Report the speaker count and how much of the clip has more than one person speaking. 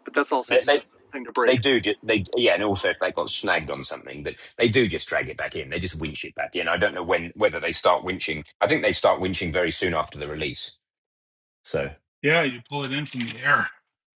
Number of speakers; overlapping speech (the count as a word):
three, about 3%